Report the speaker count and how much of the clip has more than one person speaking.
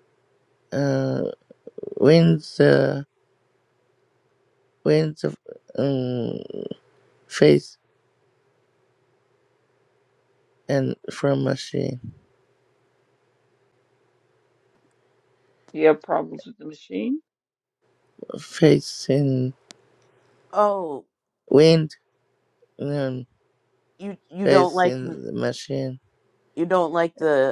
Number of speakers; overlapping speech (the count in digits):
3, about 3%